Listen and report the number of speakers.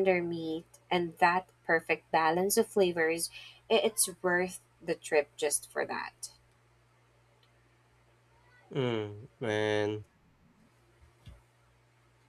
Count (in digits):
2